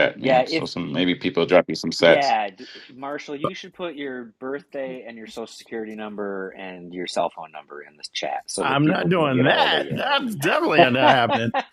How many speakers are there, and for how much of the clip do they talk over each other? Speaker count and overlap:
three, about 19%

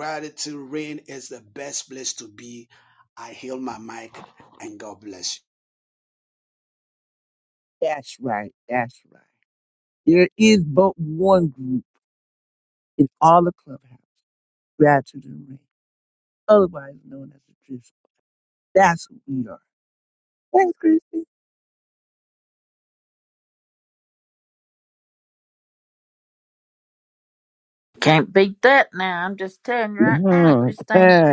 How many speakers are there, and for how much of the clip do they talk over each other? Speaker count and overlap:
three, about 2%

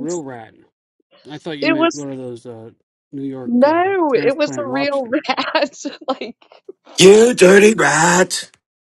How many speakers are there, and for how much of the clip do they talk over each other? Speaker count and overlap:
three, about 23%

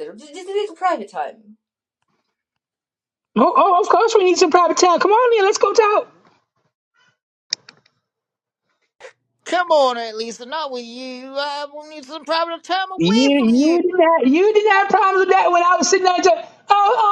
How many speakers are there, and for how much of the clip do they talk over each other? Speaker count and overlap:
three, about 5%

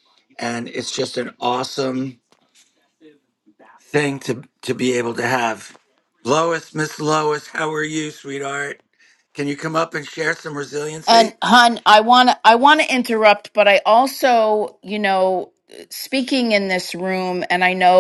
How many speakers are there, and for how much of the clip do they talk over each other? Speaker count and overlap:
two, about 1%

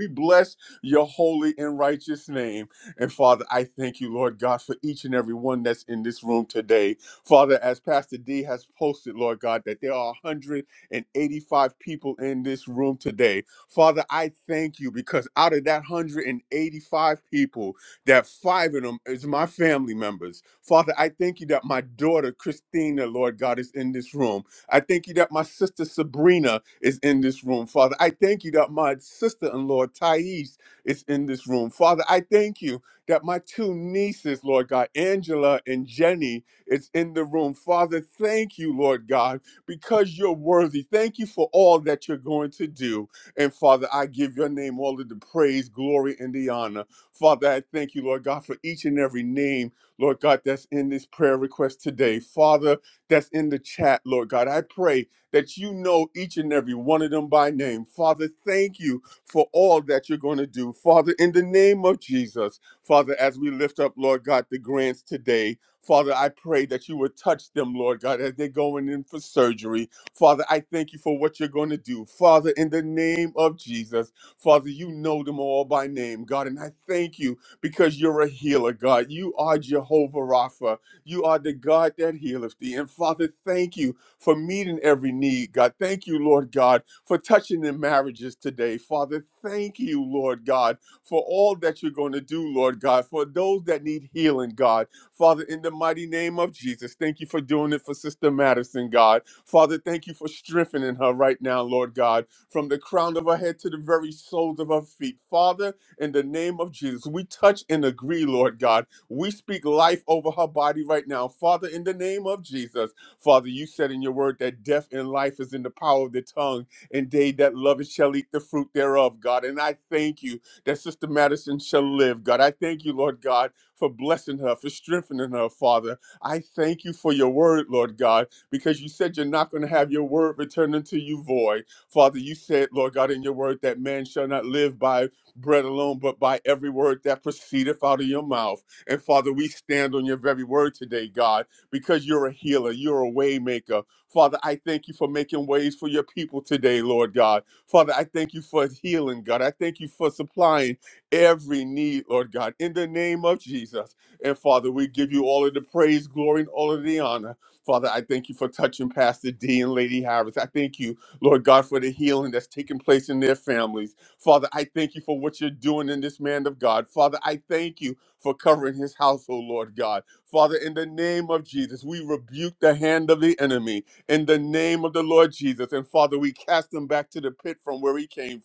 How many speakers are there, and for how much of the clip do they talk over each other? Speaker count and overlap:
one, no overlap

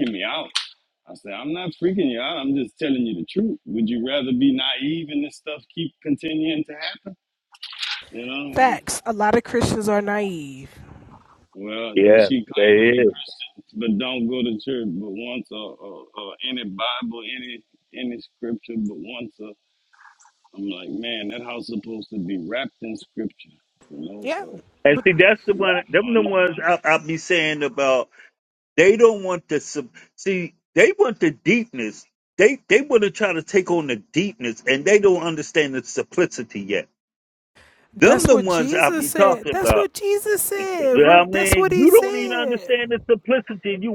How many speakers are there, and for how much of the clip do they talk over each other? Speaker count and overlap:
three, about 15%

